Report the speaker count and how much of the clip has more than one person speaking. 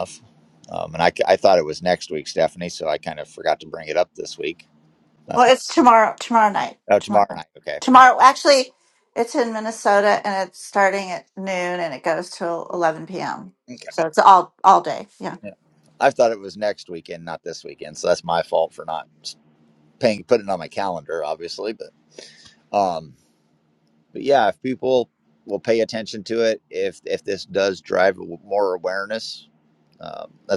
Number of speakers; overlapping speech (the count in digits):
2, about 2%